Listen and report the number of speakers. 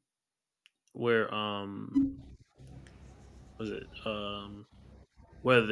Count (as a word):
one